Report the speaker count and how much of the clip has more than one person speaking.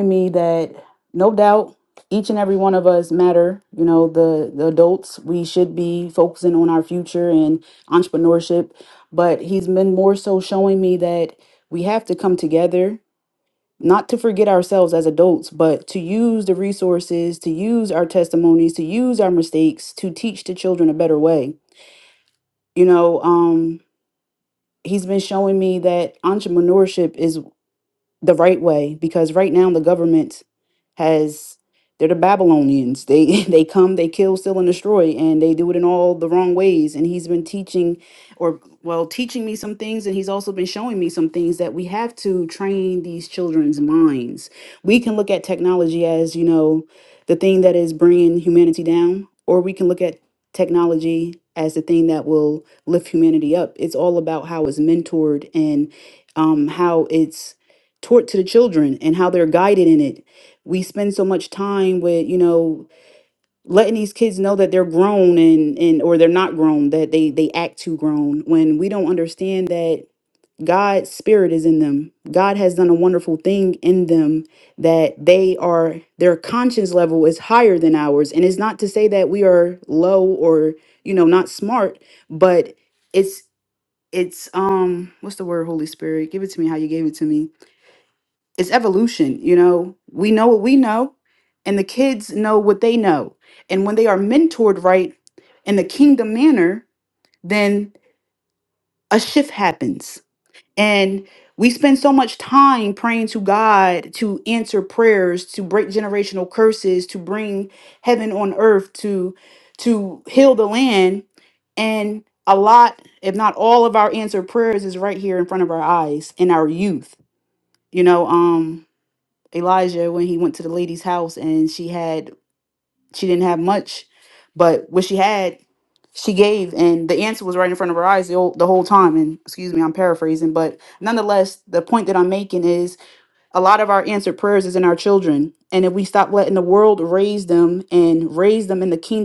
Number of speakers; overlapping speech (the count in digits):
1, no overlap